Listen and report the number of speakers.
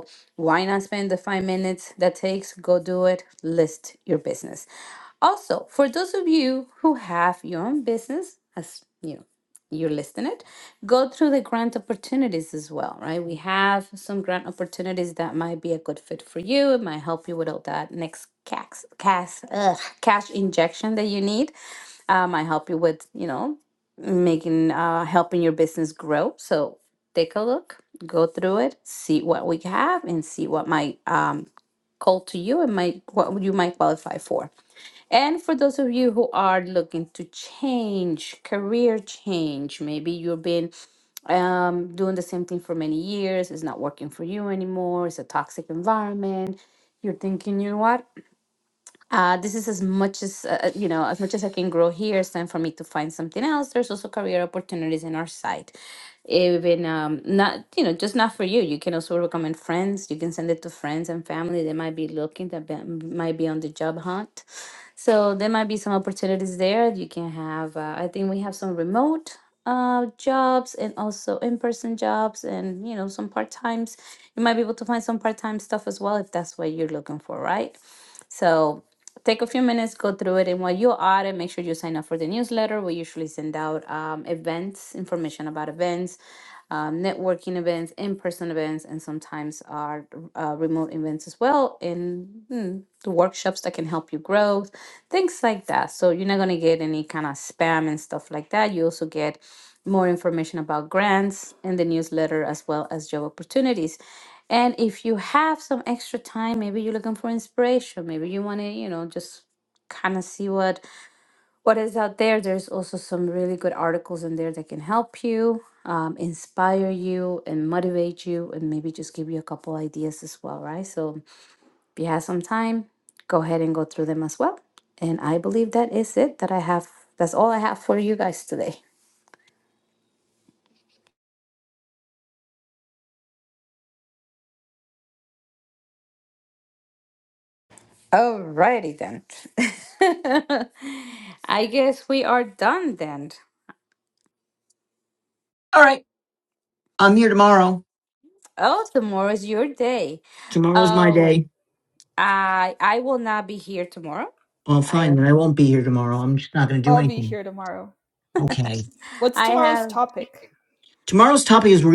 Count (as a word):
three